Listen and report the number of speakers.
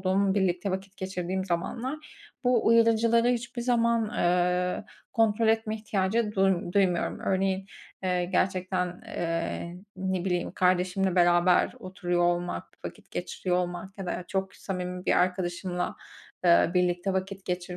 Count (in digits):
1